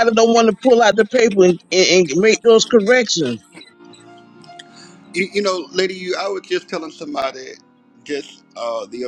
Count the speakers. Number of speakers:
2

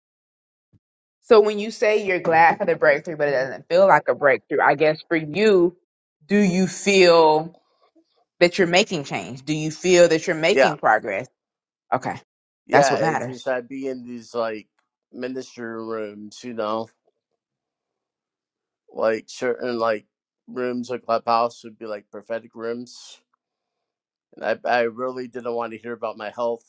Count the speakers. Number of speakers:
2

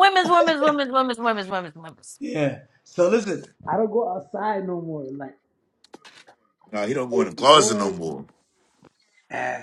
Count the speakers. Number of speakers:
3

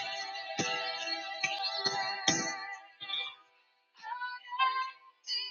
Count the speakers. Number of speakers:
0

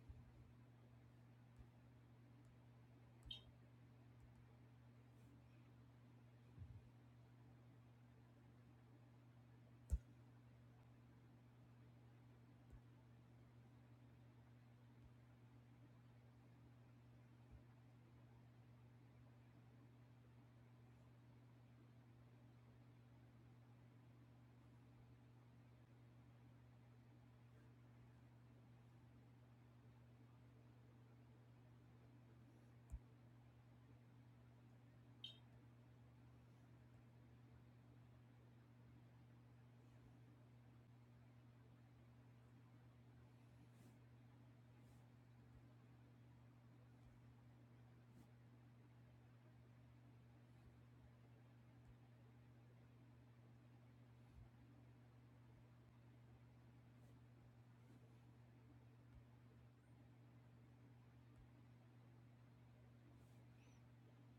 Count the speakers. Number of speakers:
0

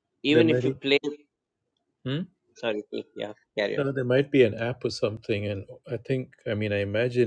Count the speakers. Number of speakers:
2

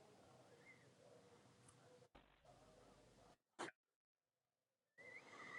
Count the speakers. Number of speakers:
0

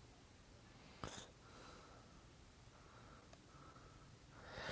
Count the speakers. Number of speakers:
0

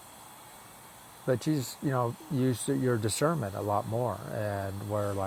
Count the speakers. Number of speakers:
1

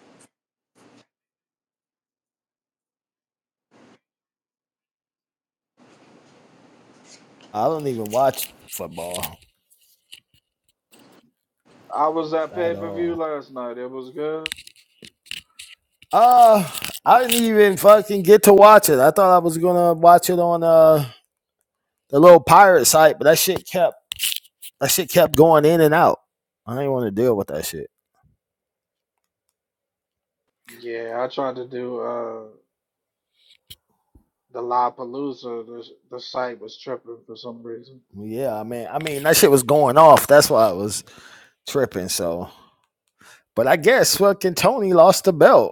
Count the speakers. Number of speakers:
2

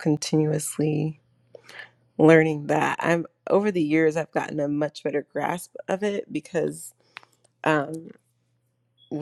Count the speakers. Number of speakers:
1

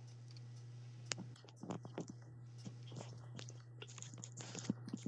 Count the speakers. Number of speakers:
0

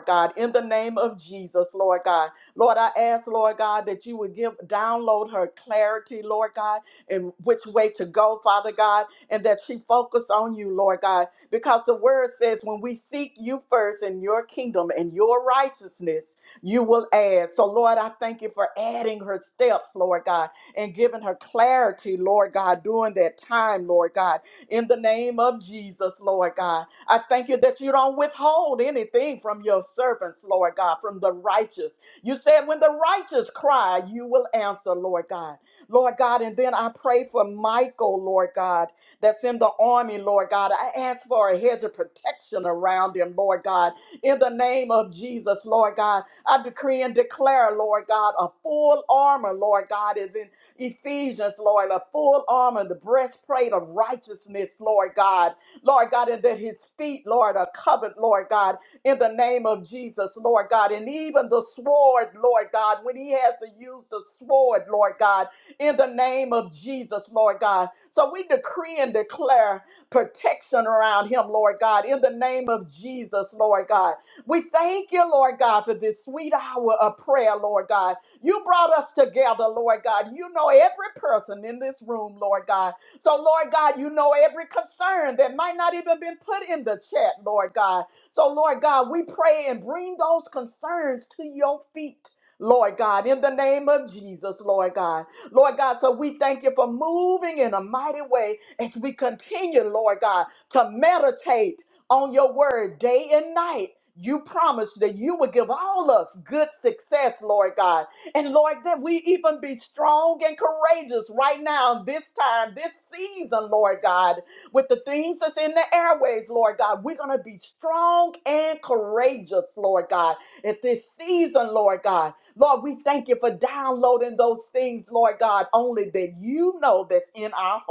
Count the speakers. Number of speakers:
1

